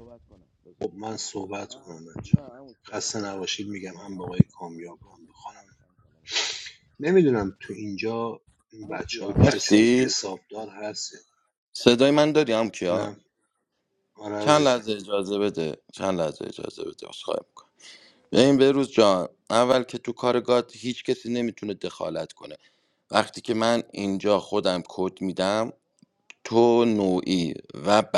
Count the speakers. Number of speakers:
two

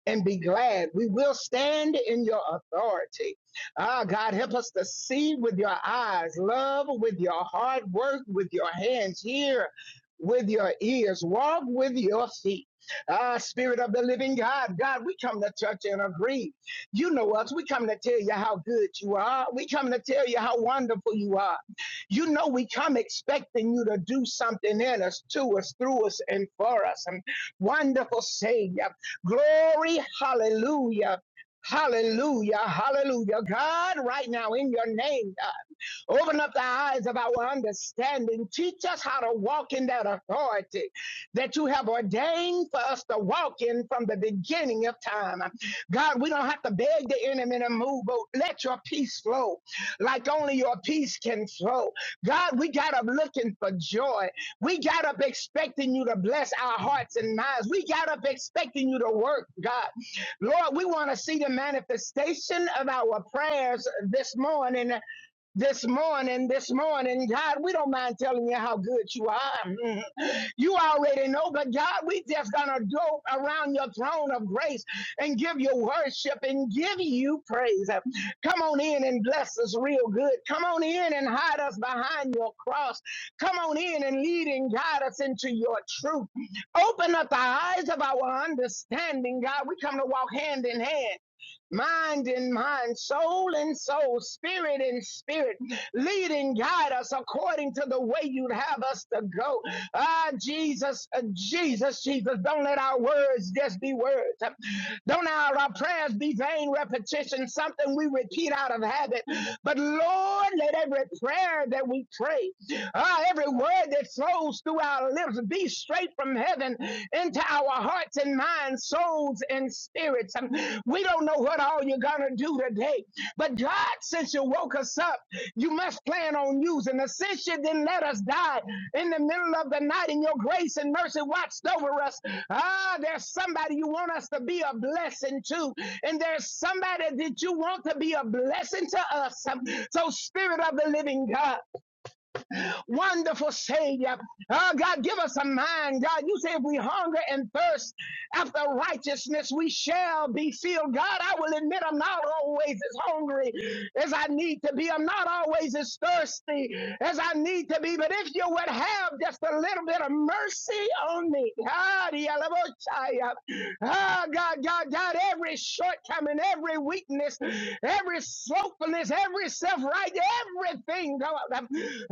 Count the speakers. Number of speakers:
one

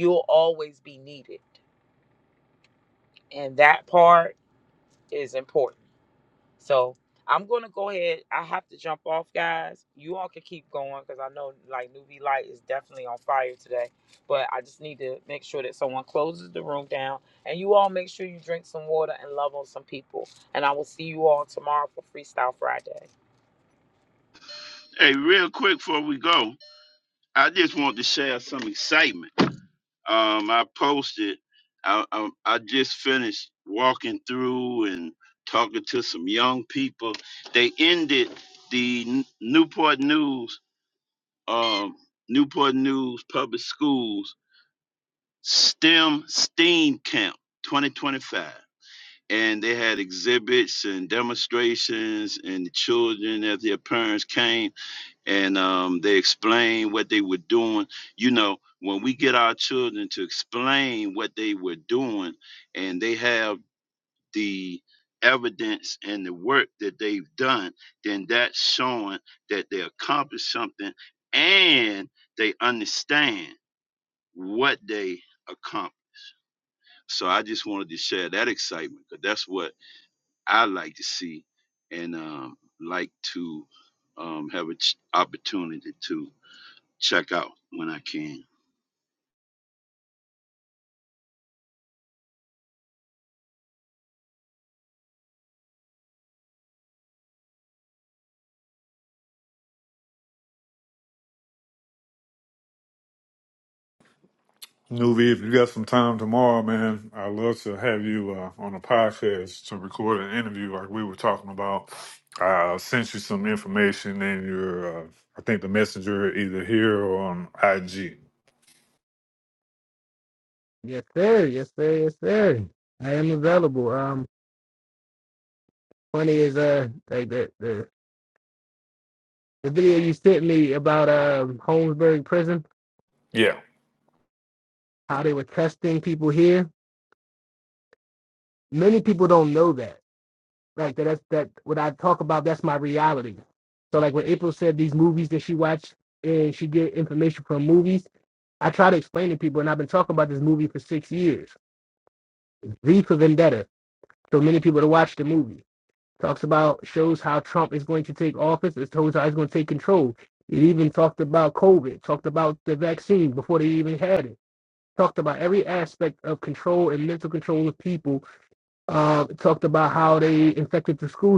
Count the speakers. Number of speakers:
four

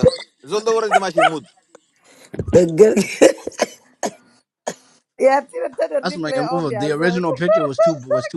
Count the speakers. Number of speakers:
four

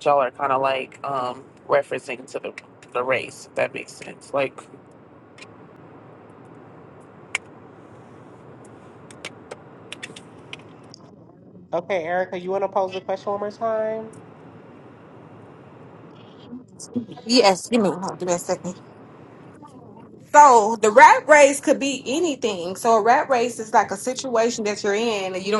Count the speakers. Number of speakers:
three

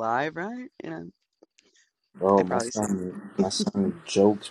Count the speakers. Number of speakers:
two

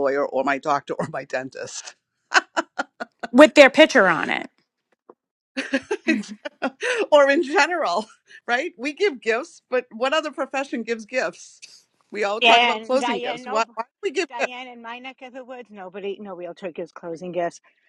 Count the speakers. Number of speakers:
three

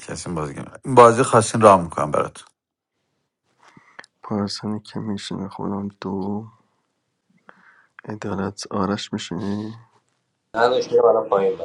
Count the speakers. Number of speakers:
three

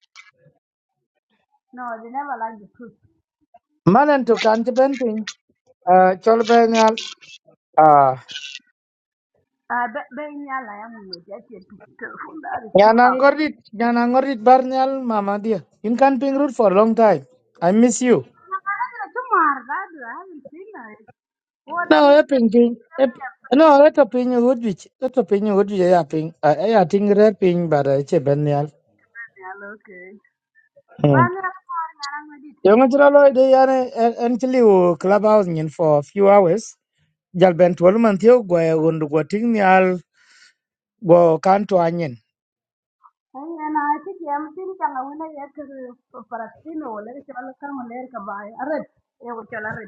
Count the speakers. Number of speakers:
two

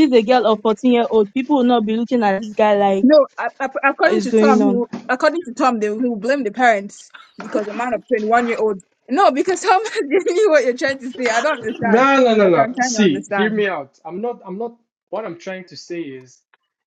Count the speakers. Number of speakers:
three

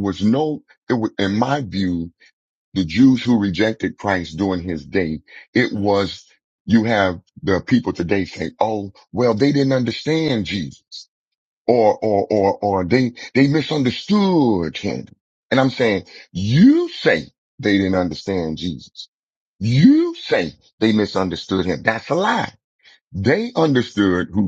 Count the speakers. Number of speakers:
one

